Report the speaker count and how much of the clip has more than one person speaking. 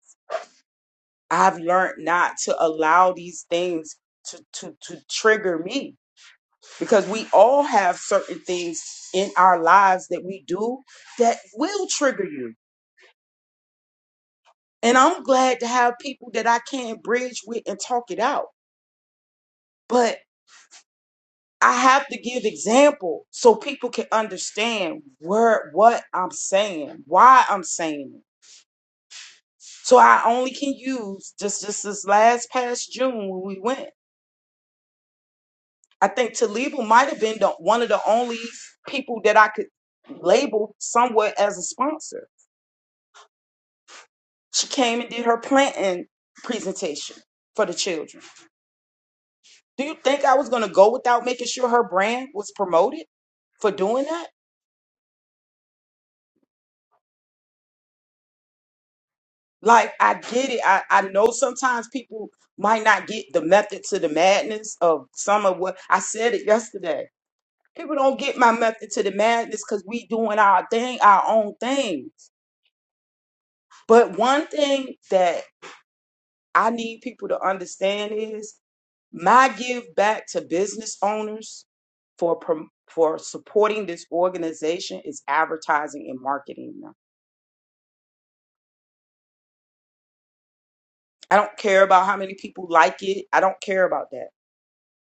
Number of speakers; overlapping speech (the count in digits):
1, no overlap